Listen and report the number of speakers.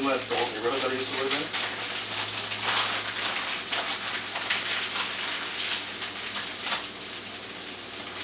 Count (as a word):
one